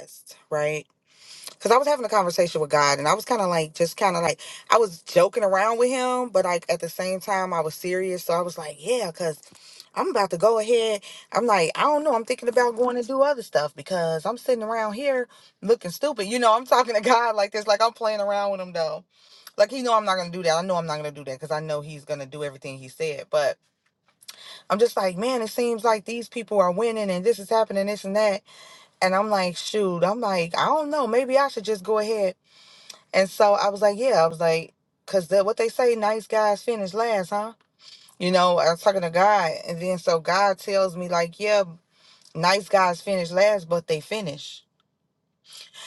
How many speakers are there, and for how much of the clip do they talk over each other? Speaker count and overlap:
1, no overlap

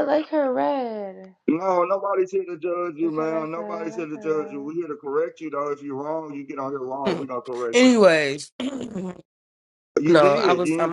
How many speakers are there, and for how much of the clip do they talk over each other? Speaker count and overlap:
3, about 26%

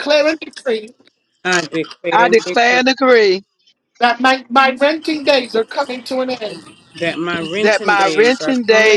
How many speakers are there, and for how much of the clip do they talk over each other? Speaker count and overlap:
3, about 23%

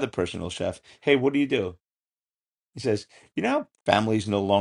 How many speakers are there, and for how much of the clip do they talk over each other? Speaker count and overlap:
1, no overlap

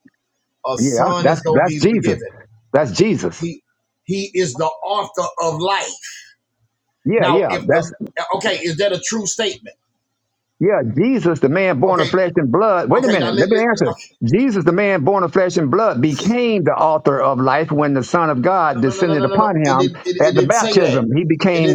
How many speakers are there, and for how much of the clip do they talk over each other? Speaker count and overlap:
2, about 28%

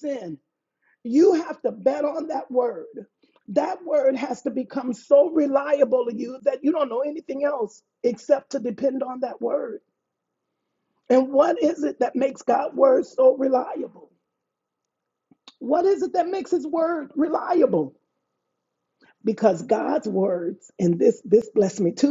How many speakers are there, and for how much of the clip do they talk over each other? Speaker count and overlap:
1, no overlap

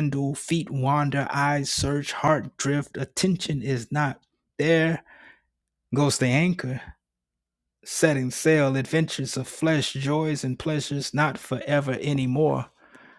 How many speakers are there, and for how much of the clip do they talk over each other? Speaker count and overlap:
1, no overlap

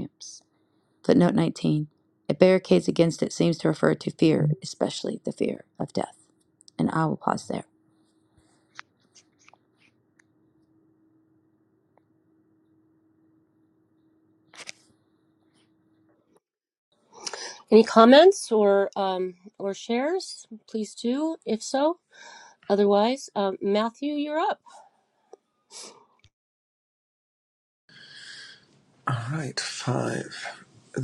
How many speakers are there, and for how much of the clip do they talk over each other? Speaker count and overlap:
3, no overlap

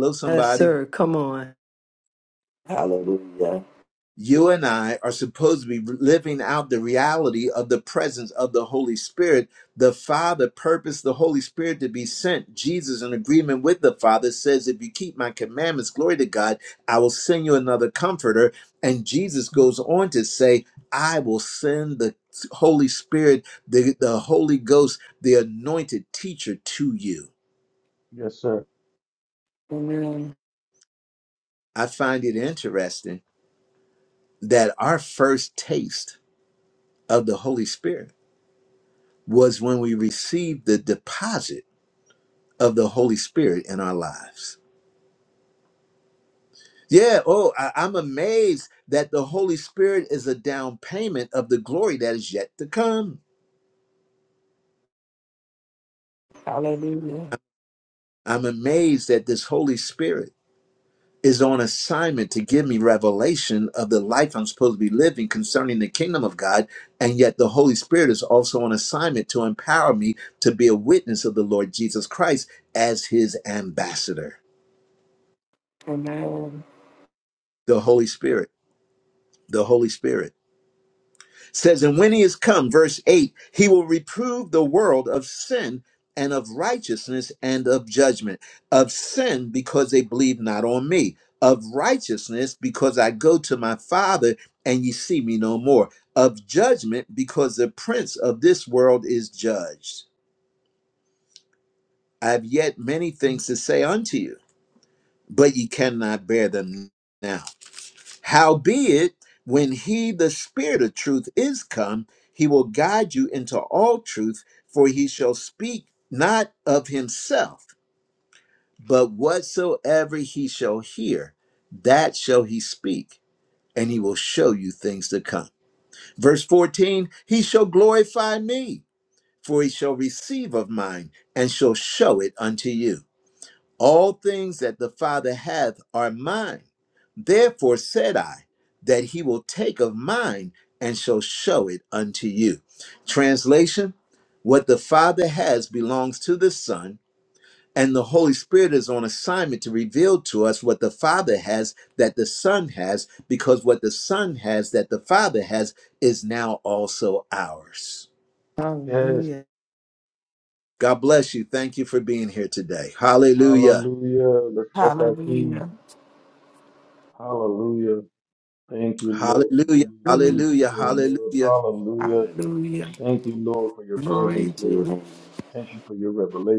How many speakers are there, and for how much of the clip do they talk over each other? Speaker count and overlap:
4, about 3%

